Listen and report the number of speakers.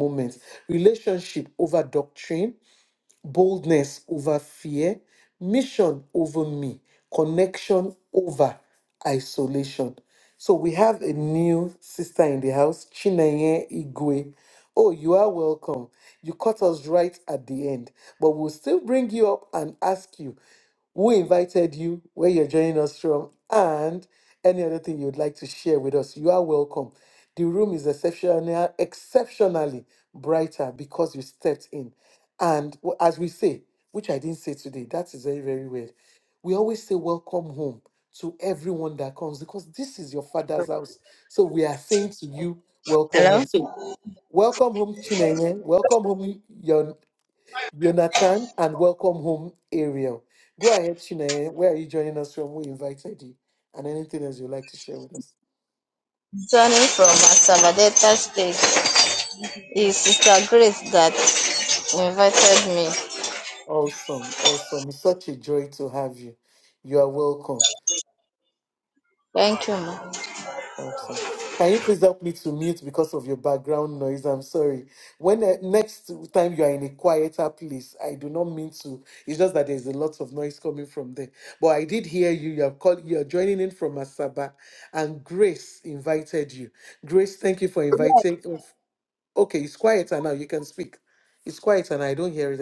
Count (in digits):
2